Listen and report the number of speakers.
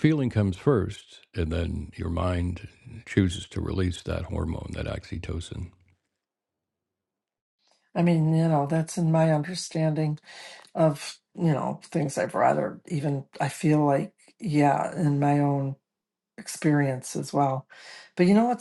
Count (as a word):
two